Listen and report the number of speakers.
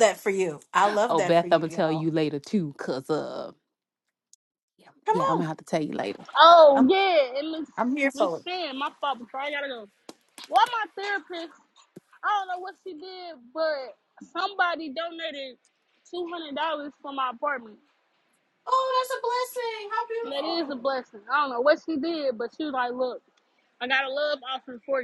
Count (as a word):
three